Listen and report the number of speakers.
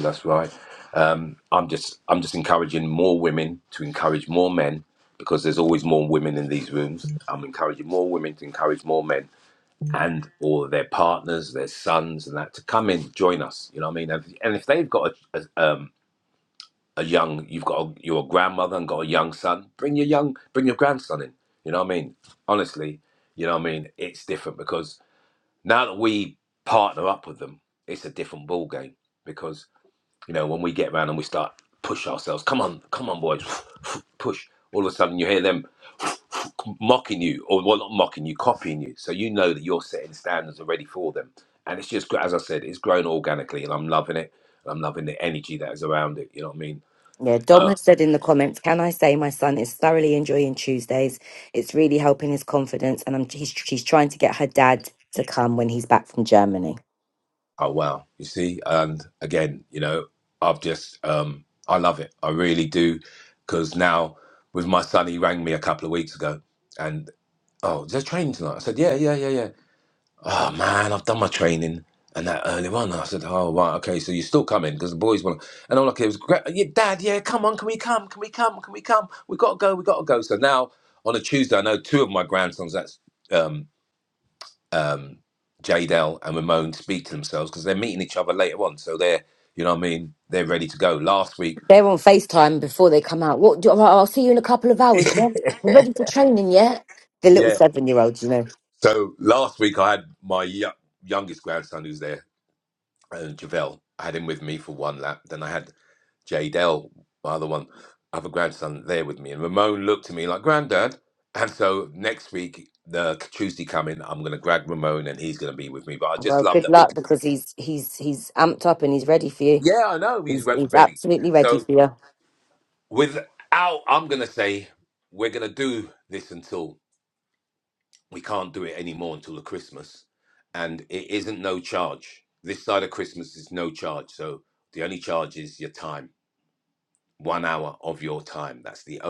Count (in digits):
2